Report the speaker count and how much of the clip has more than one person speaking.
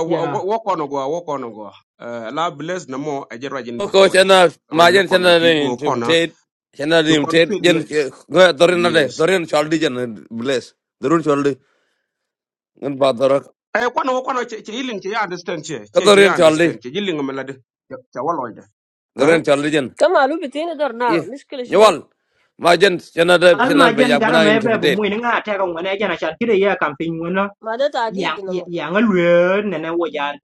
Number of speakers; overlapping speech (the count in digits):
4, about 23%